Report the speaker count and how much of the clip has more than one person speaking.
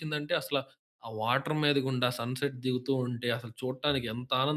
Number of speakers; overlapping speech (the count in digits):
1, no overlap